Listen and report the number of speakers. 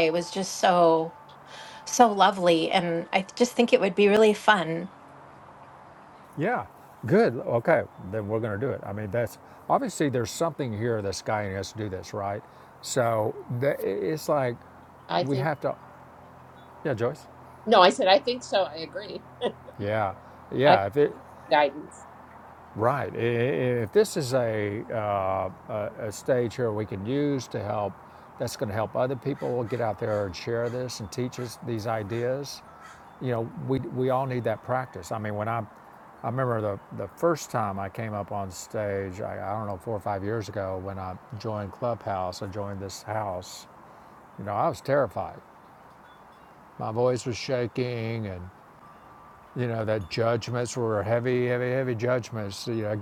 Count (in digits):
3